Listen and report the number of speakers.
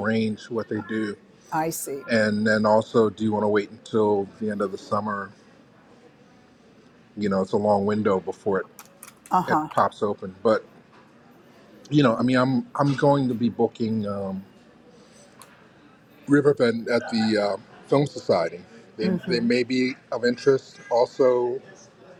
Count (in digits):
2